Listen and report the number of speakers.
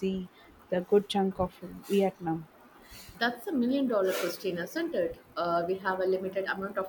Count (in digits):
2